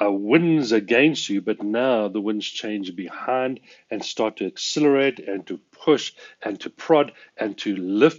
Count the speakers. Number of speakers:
1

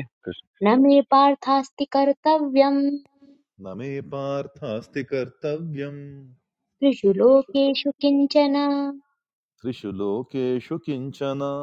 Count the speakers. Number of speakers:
2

